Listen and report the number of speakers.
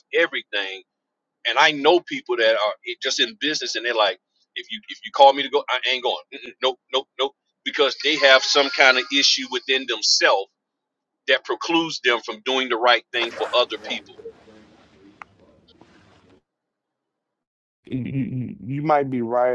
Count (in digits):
2